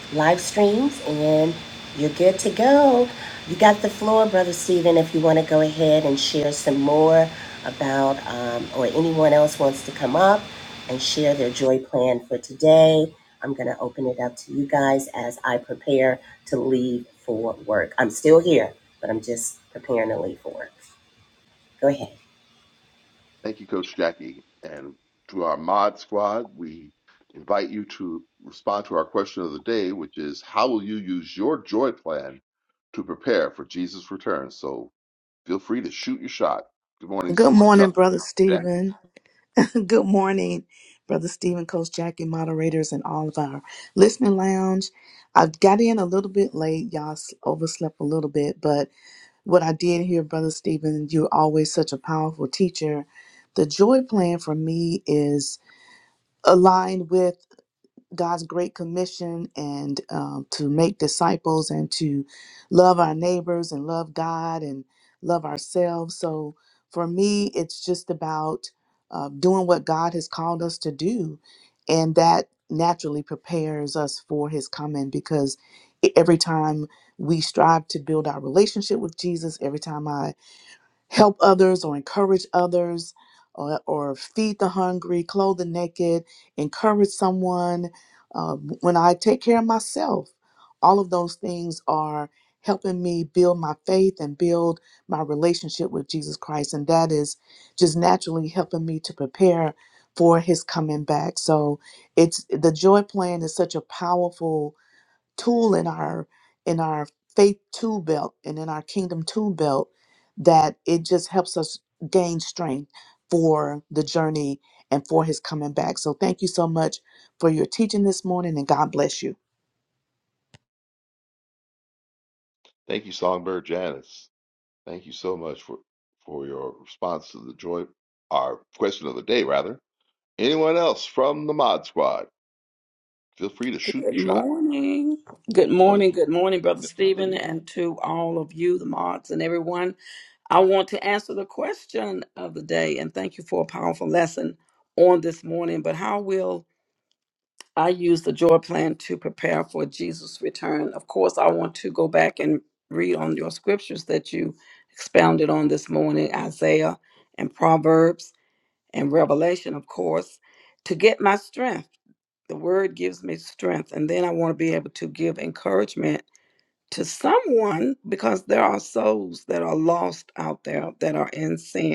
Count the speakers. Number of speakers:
4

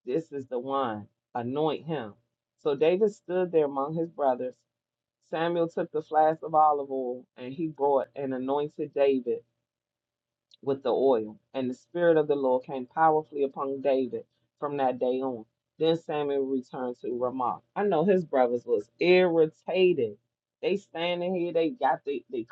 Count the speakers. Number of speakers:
1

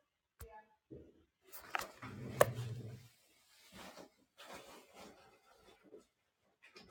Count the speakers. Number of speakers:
0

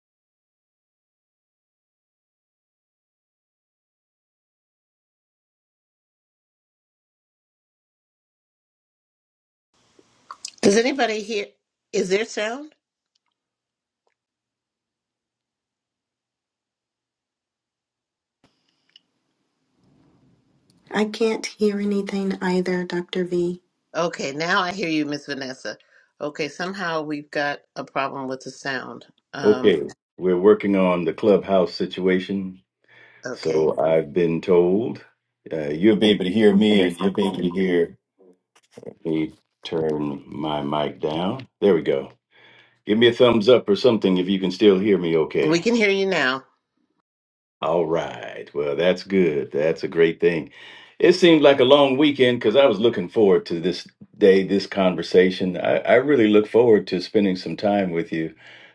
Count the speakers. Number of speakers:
3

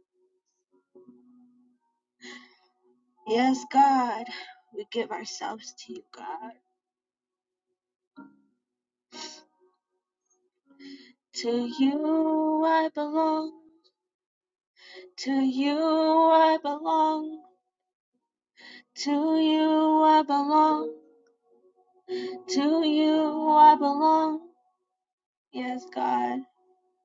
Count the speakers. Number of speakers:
1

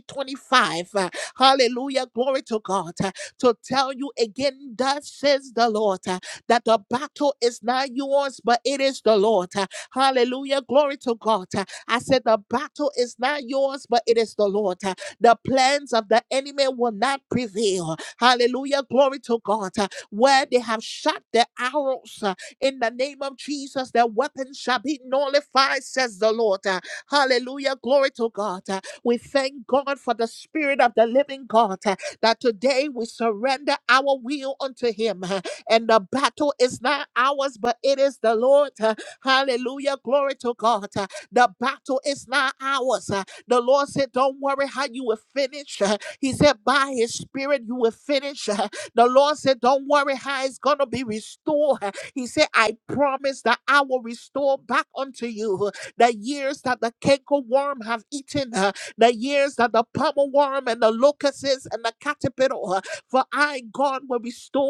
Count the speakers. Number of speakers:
1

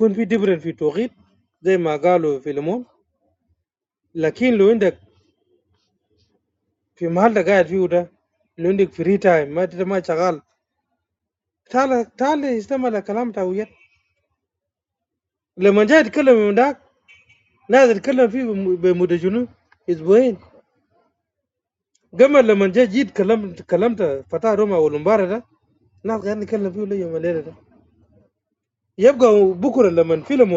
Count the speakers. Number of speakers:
1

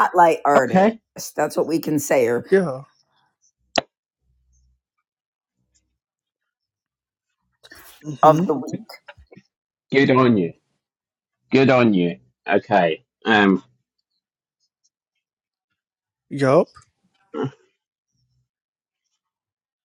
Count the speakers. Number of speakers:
3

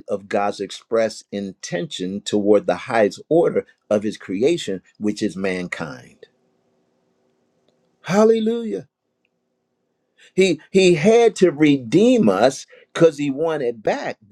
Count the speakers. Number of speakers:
1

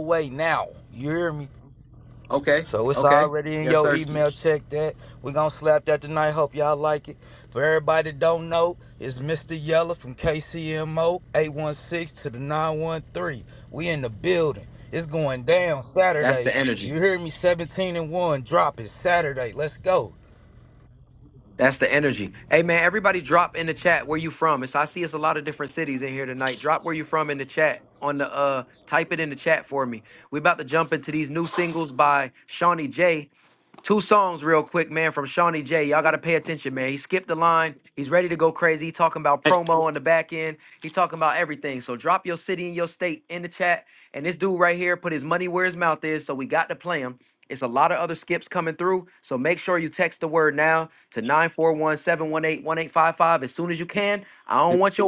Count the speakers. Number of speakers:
2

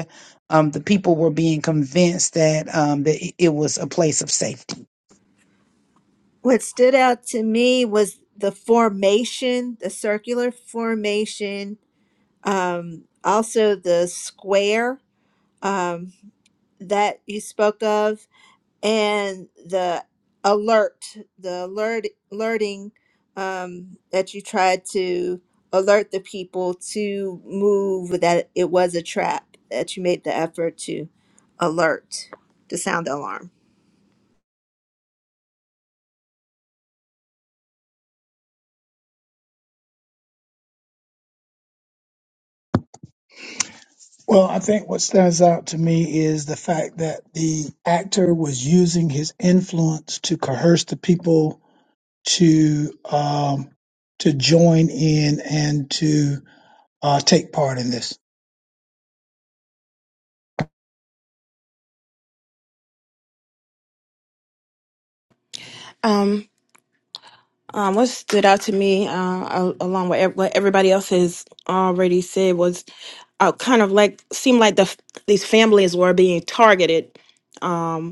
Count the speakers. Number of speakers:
4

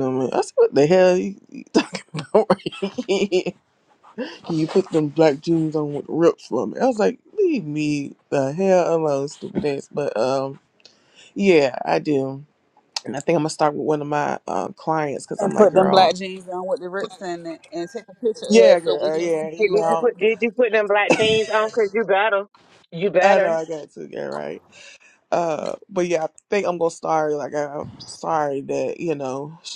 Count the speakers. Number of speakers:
3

